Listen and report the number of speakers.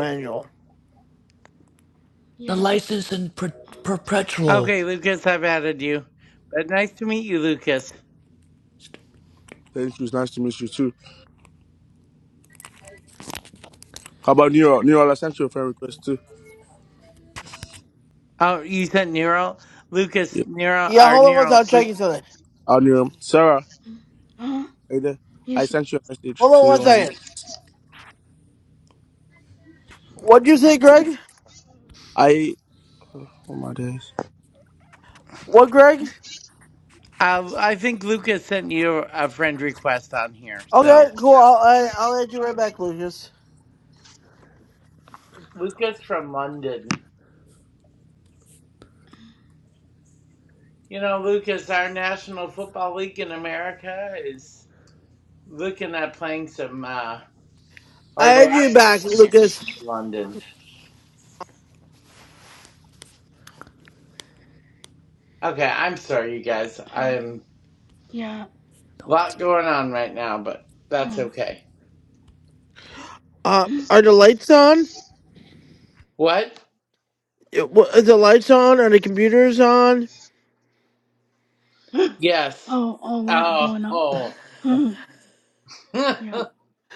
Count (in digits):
5